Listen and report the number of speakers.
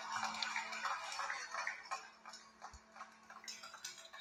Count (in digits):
0